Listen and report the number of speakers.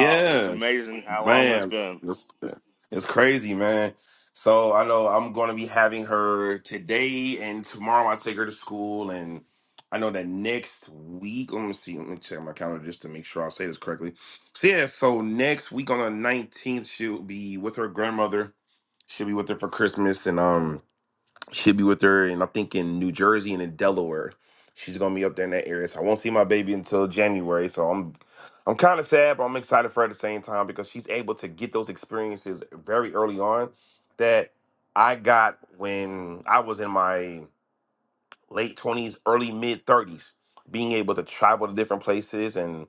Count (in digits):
2